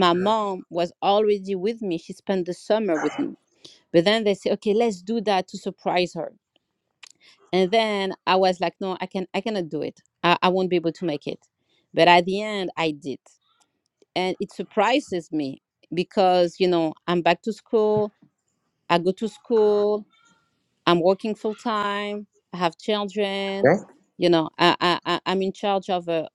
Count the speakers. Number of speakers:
1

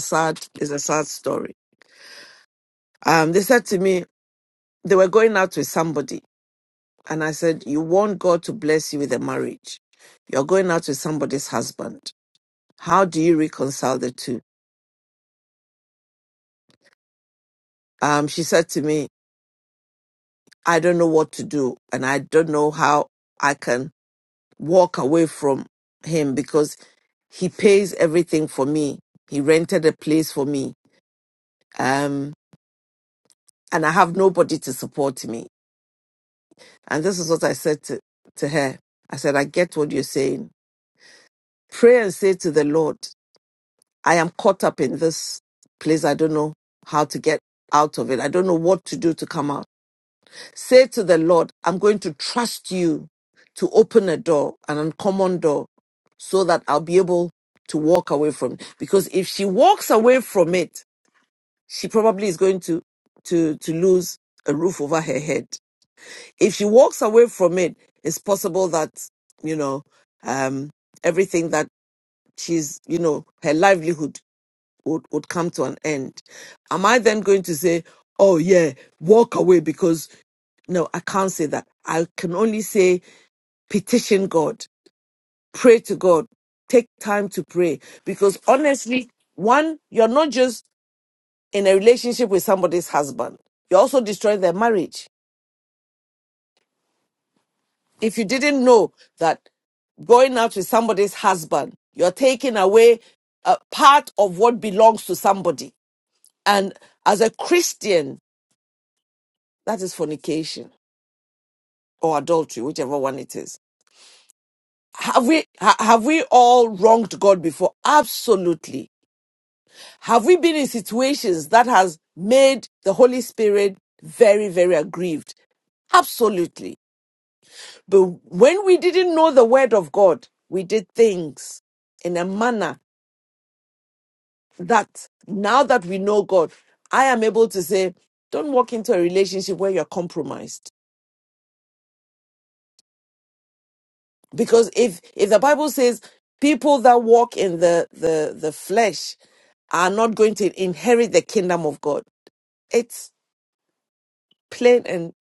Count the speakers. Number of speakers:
1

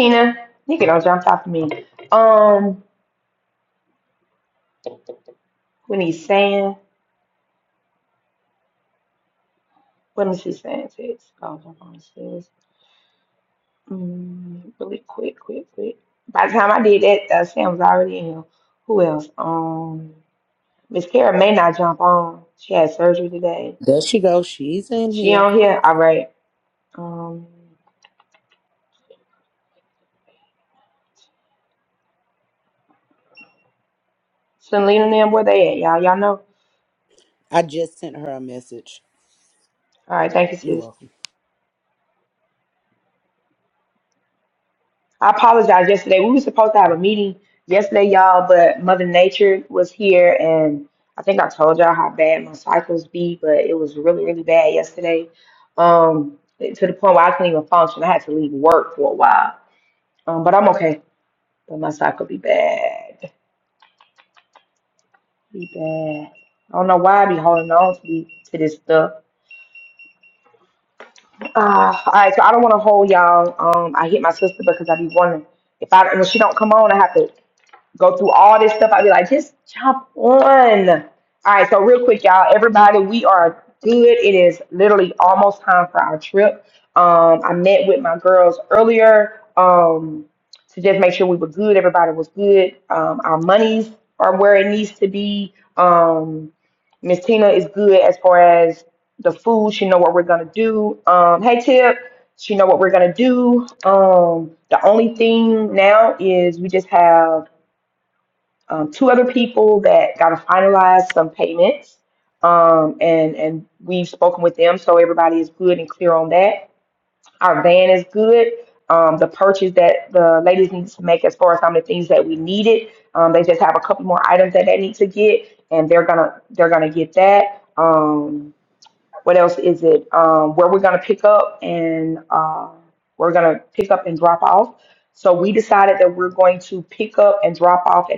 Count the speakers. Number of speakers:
2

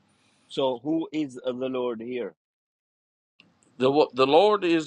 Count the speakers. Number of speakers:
2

